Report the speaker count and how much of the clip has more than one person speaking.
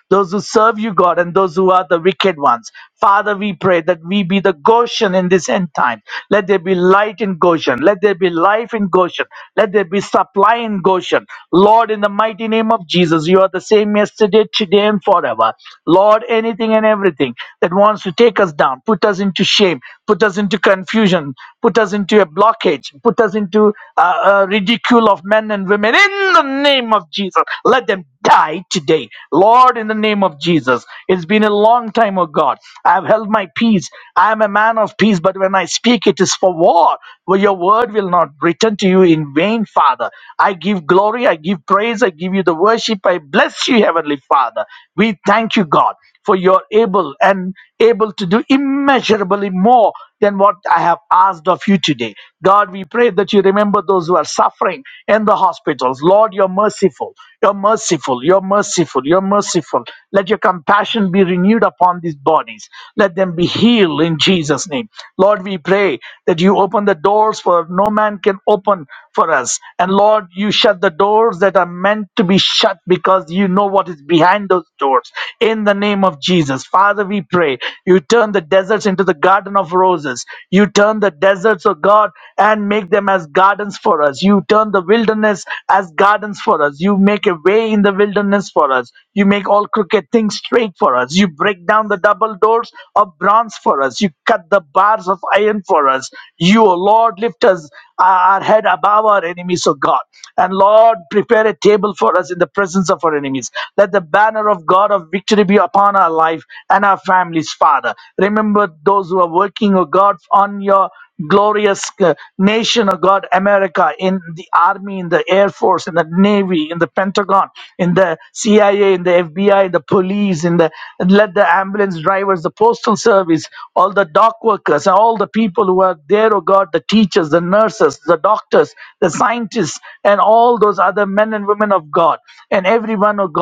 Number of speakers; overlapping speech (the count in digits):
1, no overlap